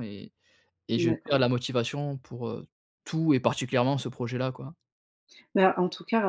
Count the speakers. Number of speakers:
two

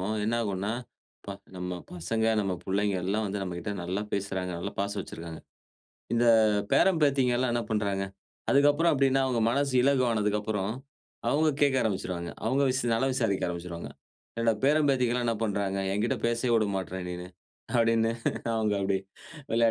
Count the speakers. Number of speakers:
one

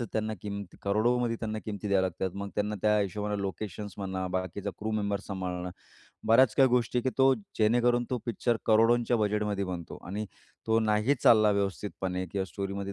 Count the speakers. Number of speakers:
one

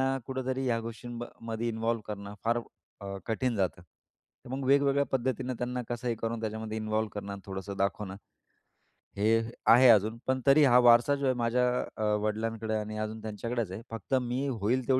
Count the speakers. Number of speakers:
one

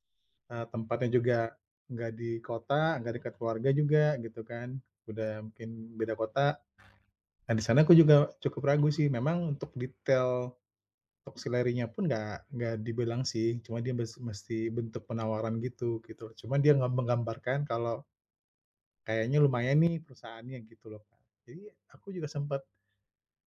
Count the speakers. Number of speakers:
one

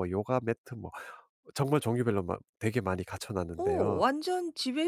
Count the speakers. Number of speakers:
two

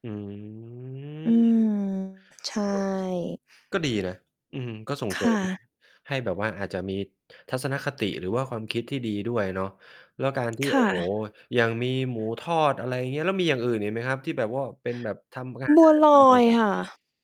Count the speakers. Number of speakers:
two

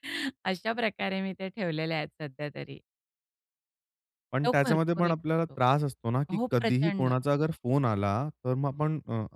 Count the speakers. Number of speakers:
two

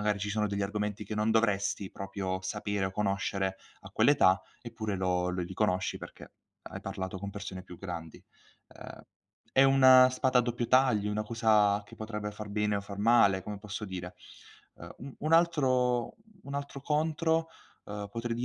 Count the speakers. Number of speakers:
one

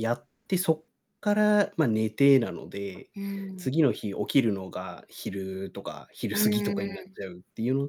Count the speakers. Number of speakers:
two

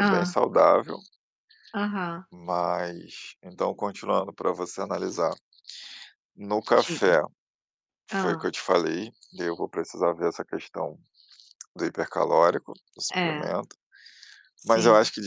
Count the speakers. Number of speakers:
two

